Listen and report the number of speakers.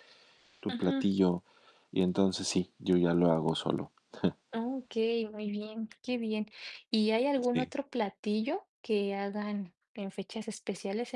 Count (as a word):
two